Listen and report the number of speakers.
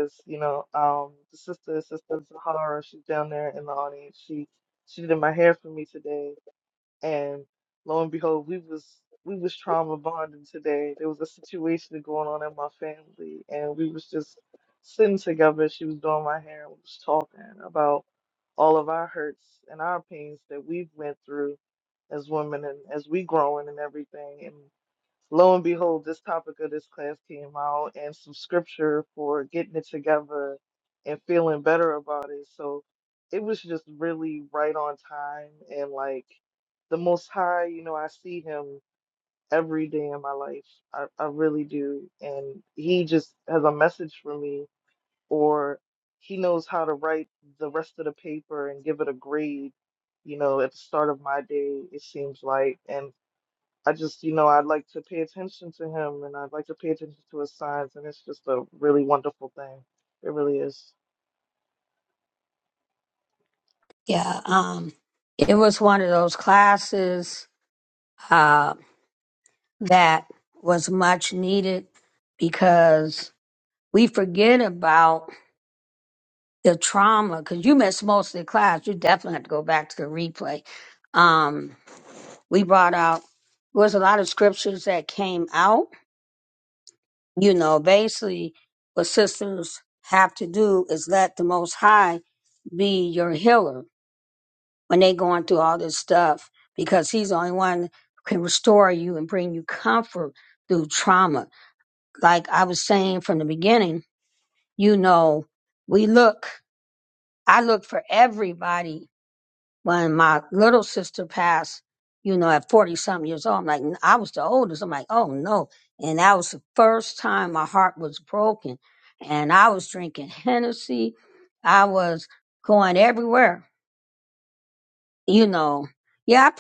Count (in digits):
2